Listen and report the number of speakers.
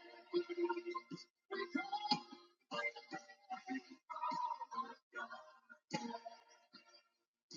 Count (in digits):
0